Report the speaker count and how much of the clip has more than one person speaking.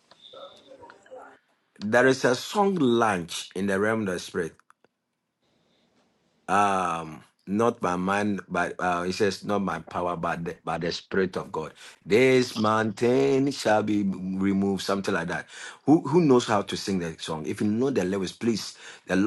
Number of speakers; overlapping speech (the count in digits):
1, no overlap